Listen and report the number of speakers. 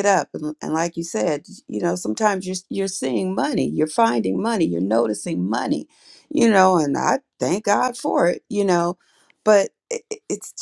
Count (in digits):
1